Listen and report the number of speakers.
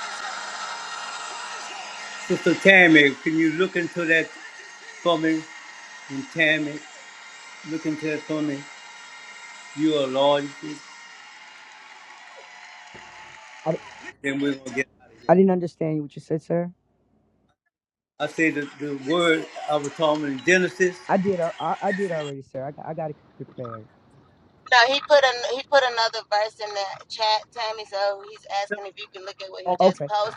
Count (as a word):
three